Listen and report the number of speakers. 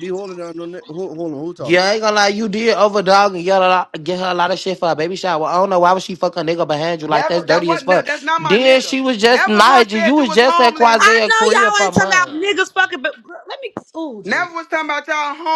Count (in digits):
4